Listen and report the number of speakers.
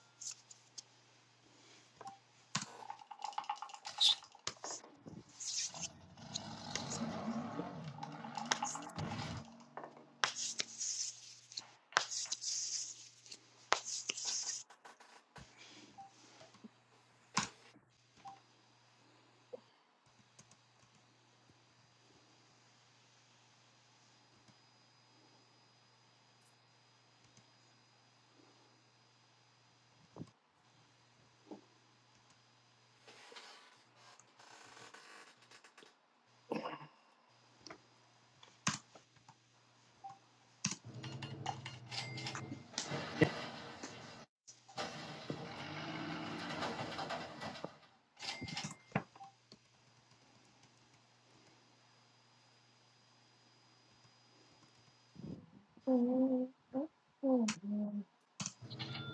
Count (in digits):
0